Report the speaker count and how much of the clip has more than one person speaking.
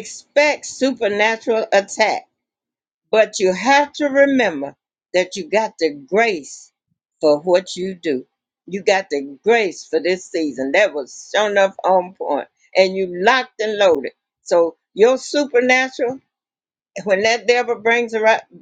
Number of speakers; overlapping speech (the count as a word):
one, no overlap